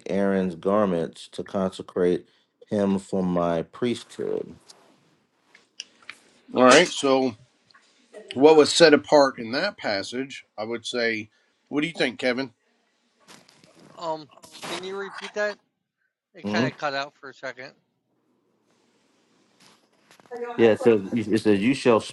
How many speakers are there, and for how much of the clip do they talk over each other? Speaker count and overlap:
3, about 1%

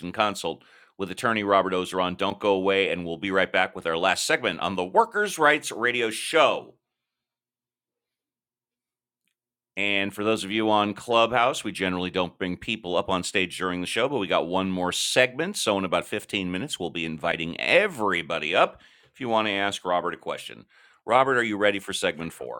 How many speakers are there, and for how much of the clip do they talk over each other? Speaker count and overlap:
1, no overlap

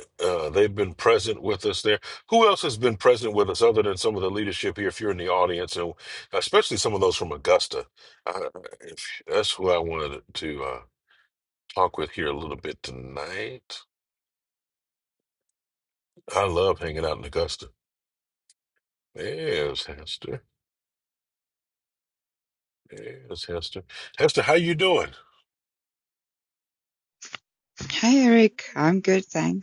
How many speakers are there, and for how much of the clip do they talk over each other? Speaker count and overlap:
2, no overlap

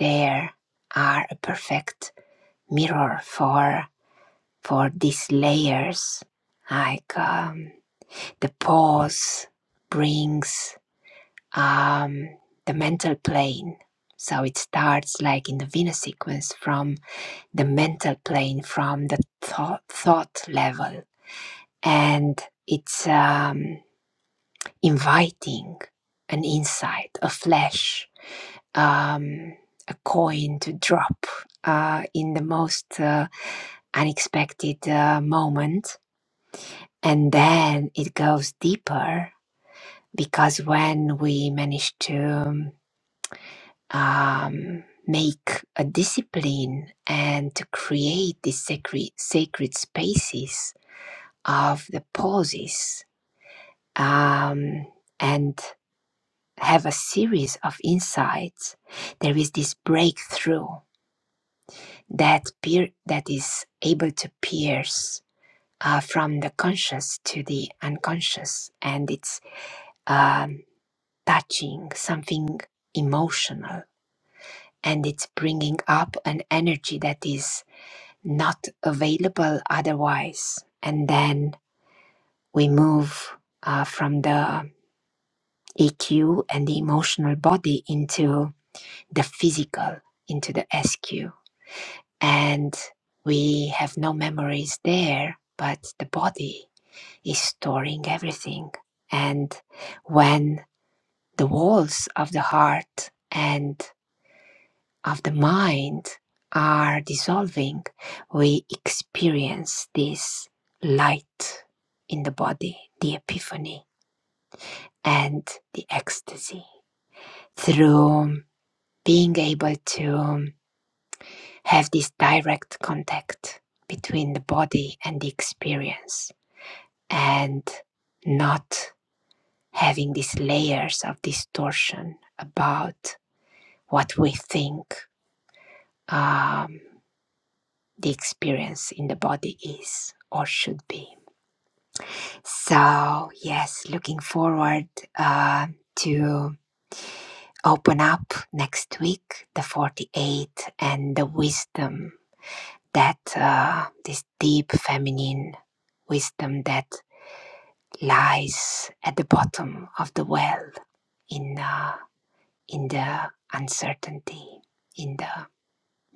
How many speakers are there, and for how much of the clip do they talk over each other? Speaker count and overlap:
1, no overlap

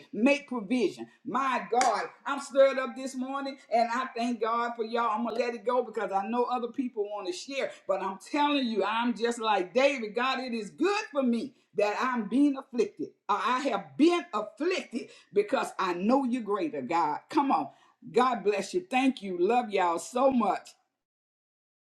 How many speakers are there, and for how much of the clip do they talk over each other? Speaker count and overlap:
1, no overlap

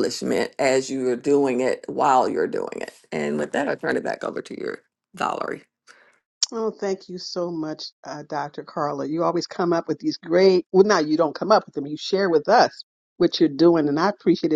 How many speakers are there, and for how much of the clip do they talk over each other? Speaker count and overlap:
2, no overlap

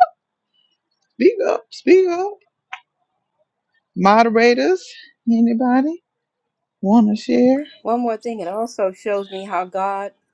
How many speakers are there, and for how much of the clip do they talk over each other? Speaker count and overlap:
2, no overlap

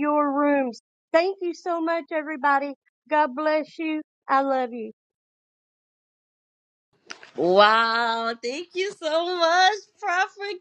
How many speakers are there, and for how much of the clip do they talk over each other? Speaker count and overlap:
2, no overlap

